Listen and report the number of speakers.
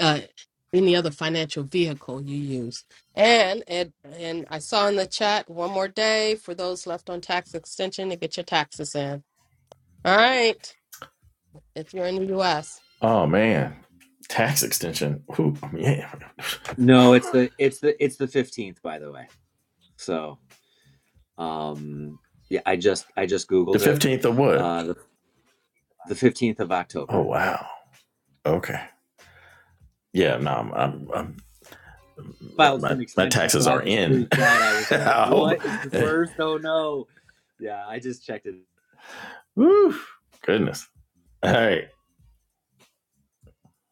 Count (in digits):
3